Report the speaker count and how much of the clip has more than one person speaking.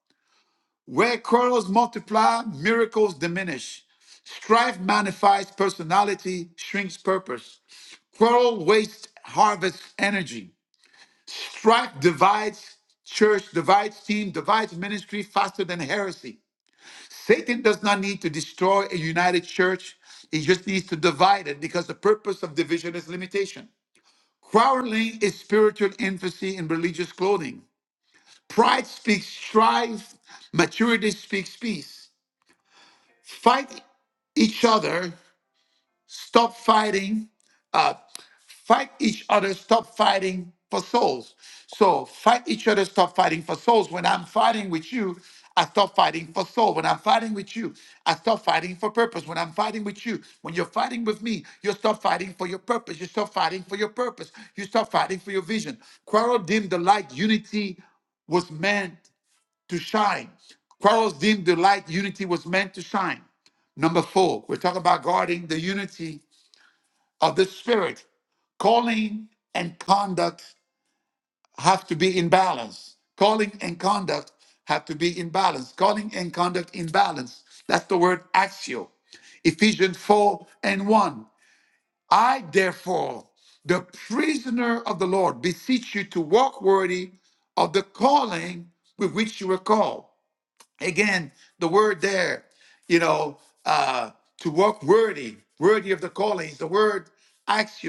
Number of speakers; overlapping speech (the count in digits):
1, no overlap